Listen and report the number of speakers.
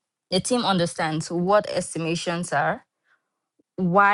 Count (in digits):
1